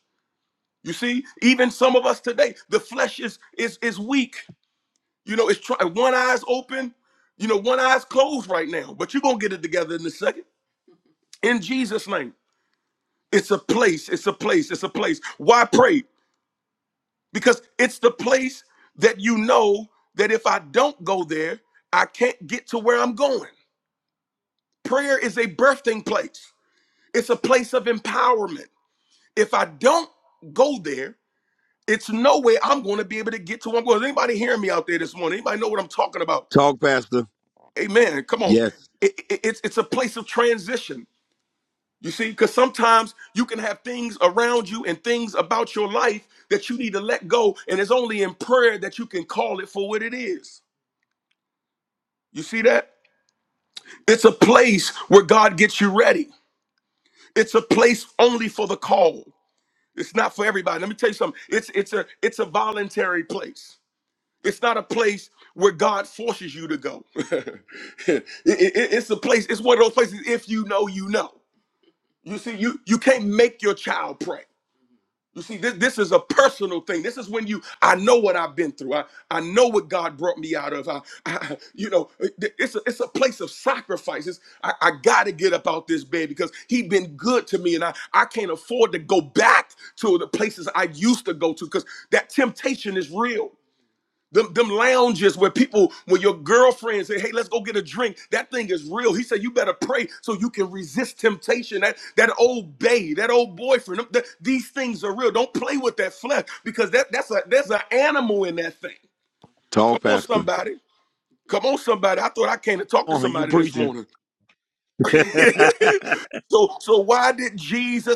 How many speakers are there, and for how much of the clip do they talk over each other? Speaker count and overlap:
two, about 1%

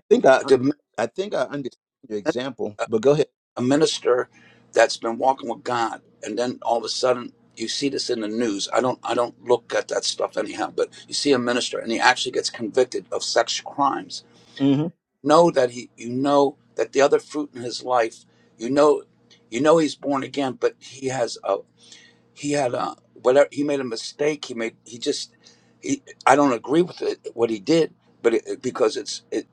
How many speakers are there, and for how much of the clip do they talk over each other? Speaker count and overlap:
two, under 1%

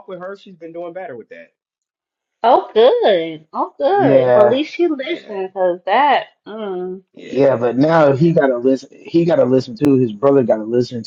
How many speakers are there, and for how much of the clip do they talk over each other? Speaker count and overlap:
three, about 12%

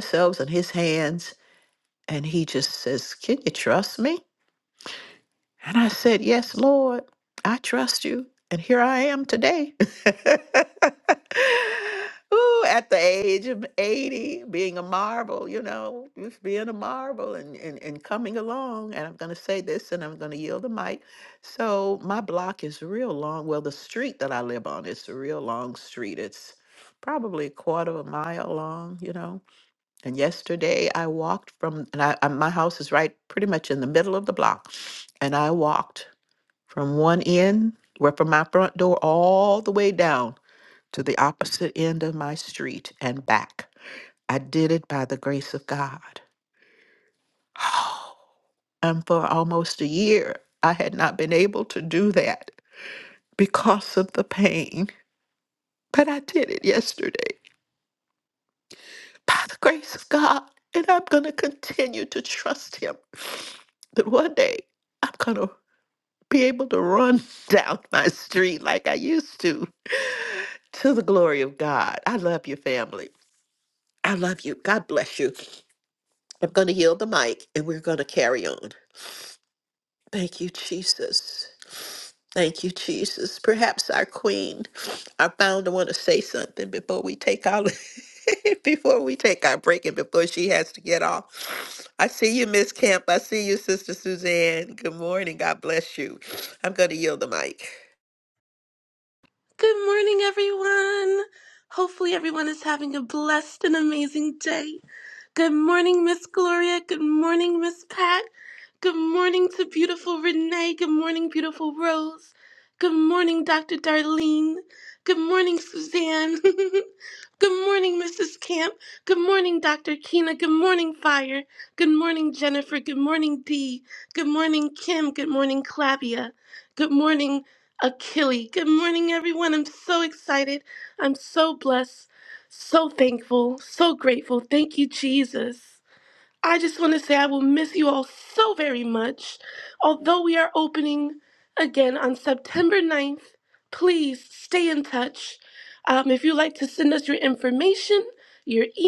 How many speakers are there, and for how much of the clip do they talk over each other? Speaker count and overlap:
two, no overlap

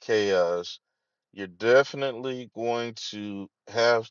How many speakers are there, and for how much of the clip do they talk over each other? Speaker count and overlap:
one, no overlap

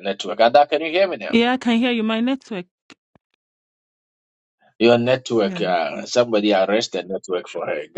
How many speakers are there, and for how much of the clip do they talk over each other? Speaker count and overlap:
two, about 5%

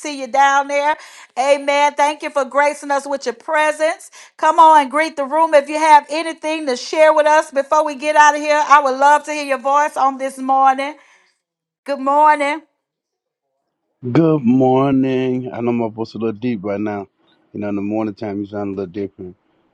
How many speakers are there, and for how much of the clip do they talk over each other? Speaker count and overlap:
two, no overlap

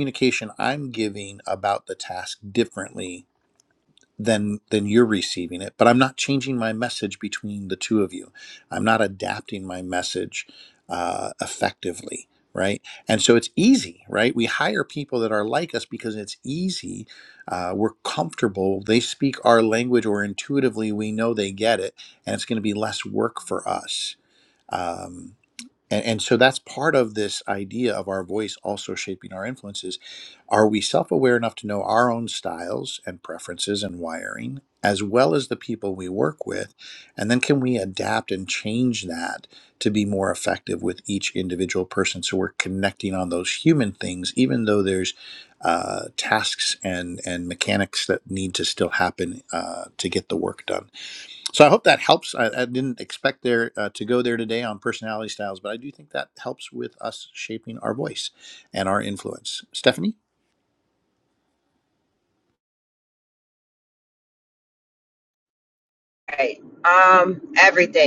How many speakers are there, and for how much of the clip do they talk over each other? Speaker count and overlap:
two, no overlap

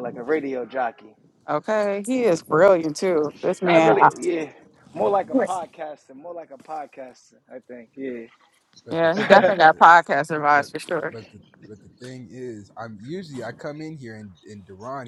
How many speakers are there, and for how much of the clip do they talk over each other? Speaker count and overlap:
three, about 10%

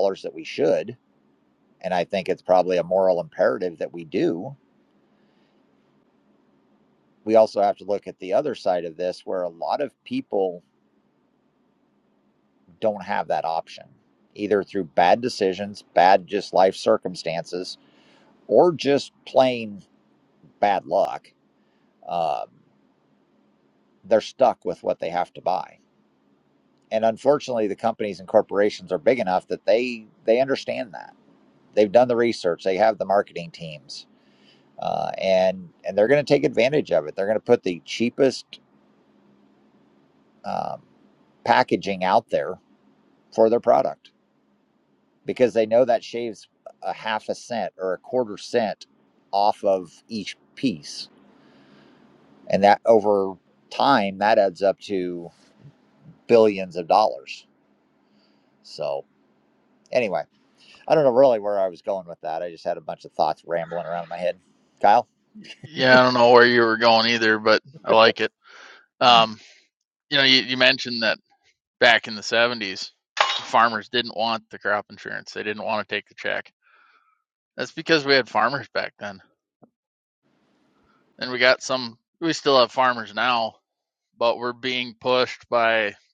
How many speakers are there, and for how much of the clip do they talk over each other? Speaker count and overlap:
two, no overlap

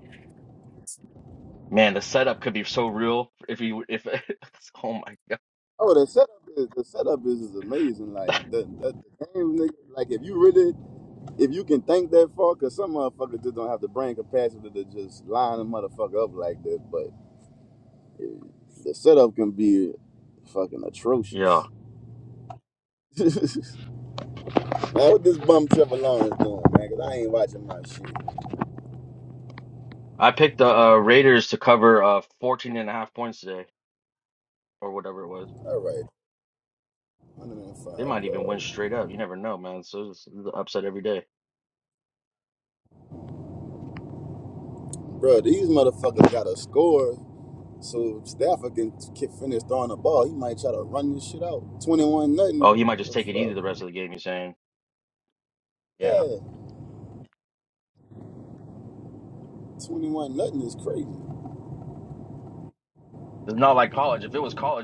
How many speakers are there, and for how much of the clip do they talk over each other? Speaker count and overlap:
two, about 3%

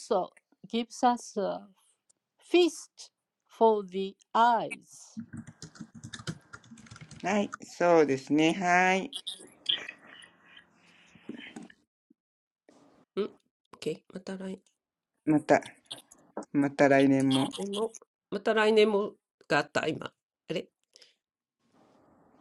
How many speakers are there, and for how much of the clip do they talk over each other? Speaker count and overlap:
three, no overlap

